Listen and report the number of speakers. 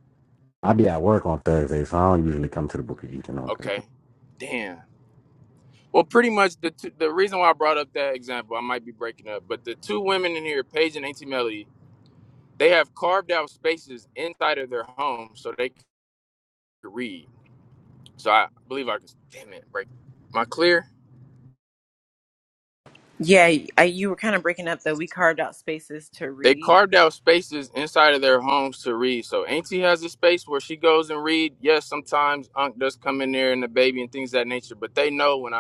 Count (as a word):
three